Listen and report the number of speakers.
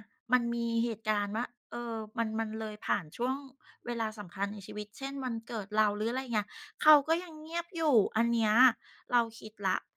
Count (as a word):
one